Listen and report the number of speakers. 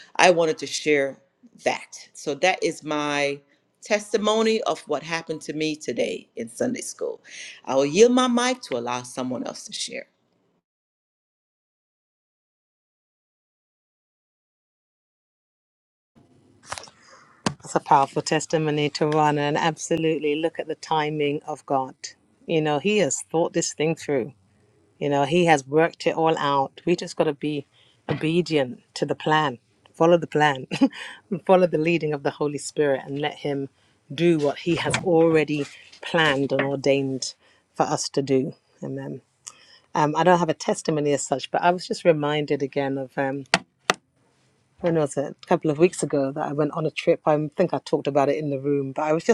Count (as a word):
two